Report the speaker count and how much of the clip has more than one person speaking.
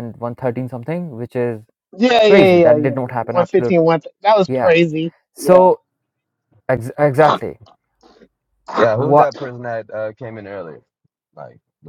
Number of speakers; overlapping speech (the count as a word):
three, about 18%